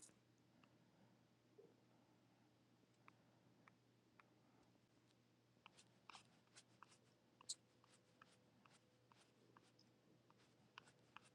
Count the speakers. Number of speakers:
0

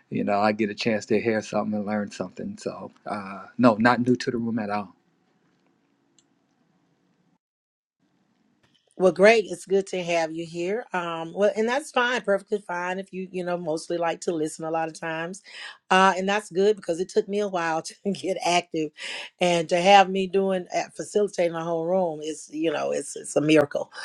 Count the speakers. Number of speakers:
2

